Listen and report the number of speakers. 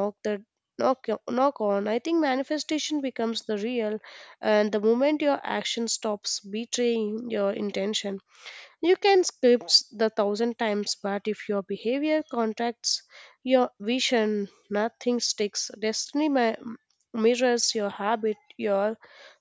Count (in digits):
1